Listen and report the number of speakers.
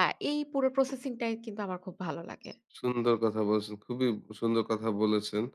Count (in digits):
2